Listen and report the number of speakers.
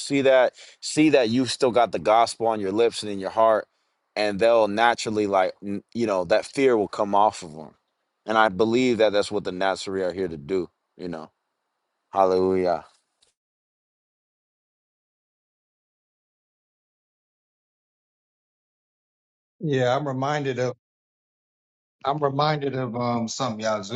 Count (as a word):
two